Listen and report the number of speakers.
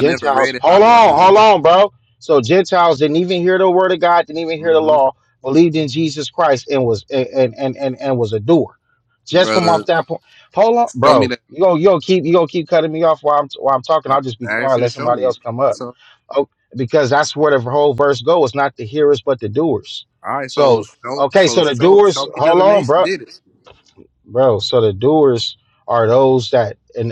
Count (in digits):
2